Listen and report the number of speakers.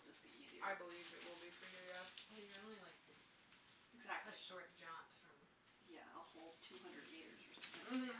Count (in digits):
3